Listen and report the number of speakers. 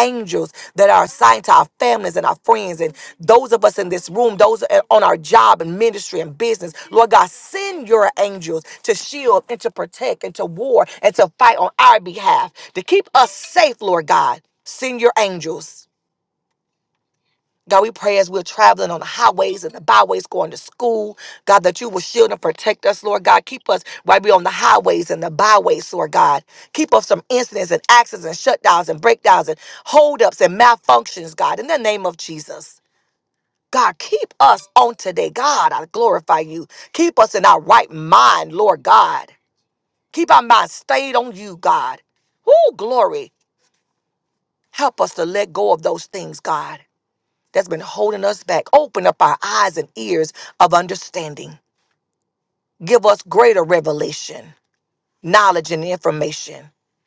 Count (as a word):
one